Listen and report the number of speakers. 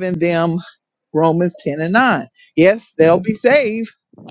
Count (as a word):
one